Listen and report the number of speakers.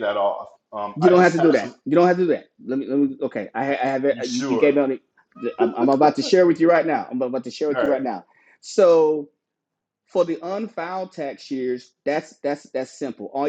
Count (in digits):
2